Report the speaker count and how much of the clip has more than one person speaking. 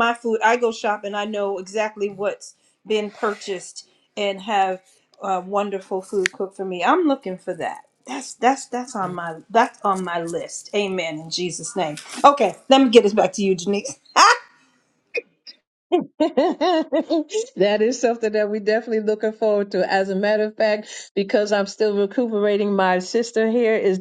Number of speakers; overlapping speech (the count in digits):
2, no overlap